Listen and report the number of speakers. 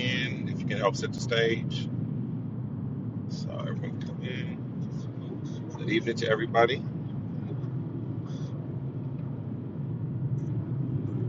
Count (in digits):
1